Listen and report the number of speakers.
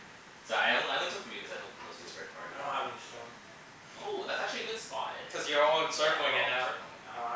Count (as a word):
three